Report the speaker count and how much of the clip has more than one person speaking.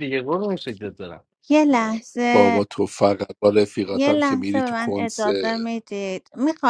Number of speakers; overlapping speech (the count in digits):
3, about 24%